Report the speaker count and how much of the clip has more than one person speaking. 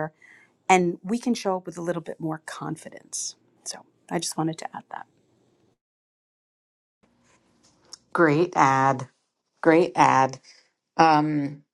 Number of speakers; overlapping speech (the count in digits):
2, no overlap